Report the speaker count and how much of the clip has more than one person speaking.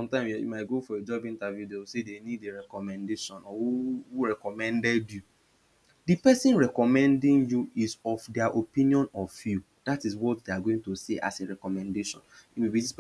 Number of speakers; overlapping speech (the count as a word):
one, no overlap